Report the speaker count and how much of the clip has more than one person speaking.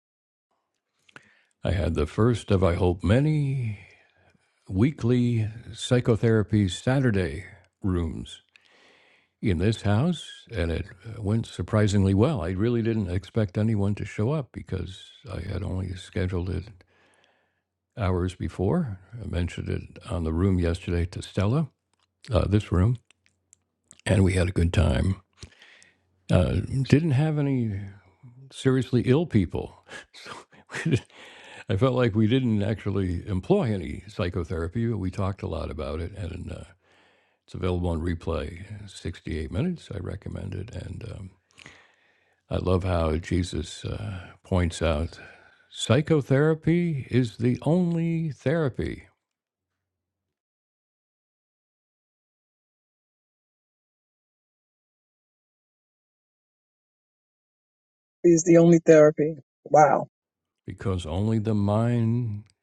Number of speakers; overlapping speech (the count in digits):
2, no overlap